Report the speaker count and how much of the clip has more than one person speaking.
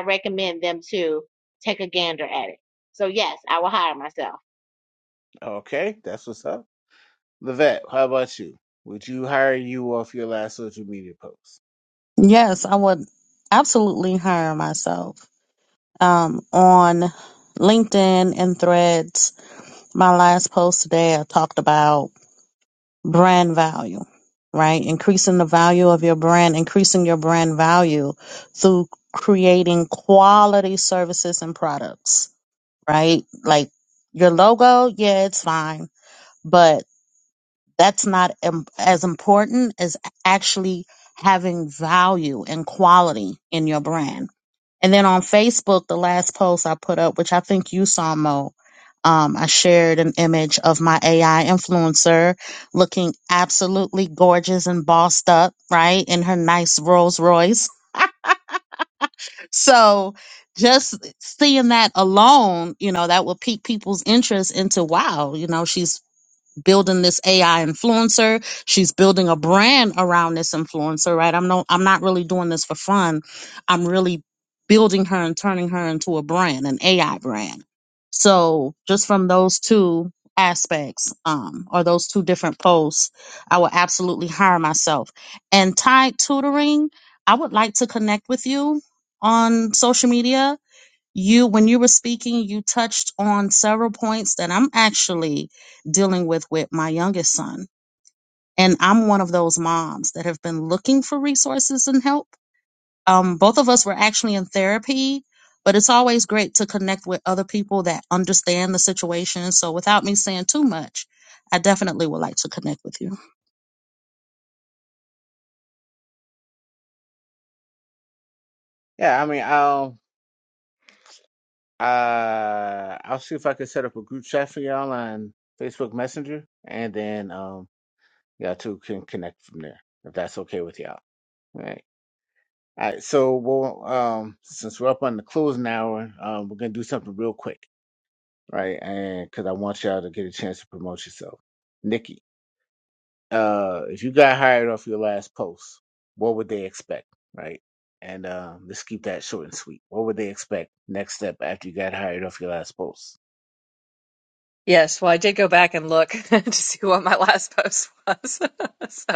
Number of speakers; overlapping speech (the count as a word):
four, no overlap